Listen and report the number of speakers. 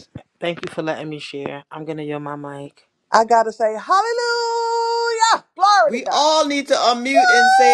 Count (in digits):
3